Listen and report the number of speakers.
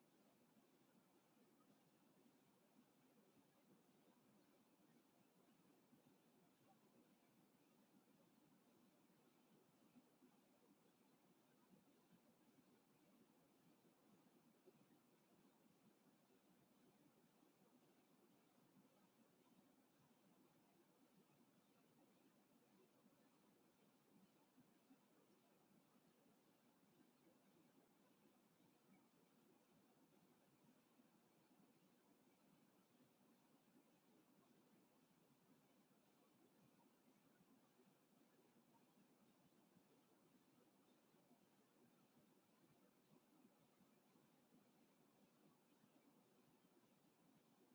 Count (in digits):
0